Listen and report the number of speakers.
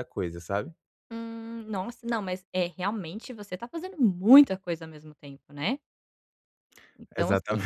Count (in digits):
2